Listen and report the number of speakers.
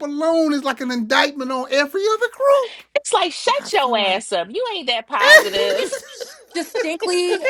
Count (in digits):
3